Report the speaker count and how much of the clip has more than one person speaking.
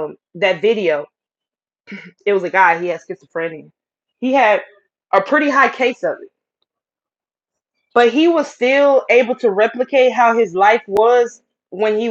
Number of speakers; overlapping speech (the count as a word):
one, no overlap